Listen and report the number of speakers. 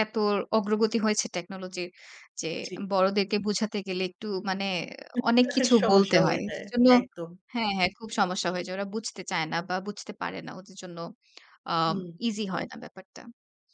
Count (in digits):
2